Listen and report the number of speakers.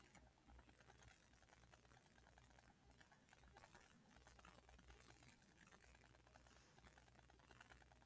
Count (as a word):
zero